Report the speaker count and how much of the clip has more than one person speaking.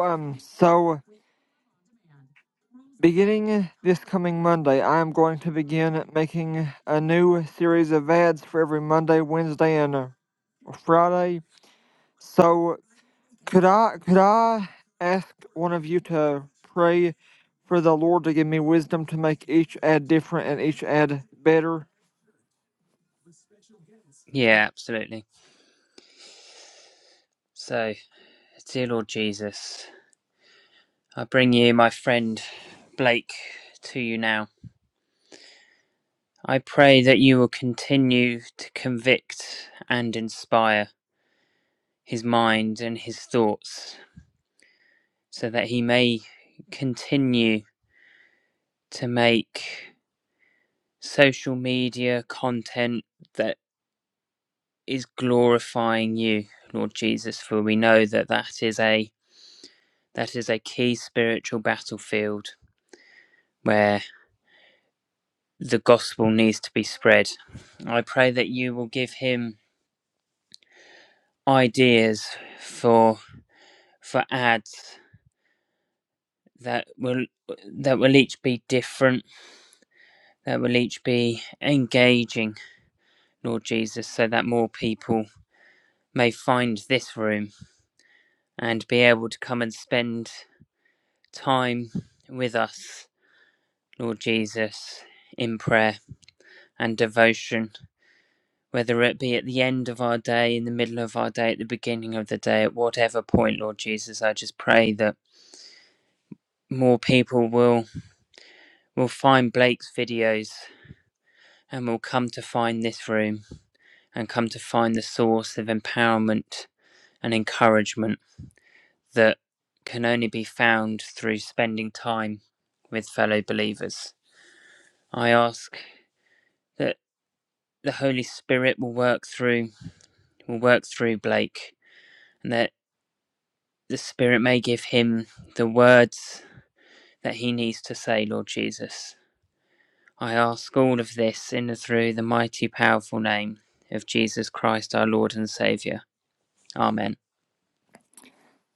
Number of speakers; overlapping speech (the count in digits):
2, no overlap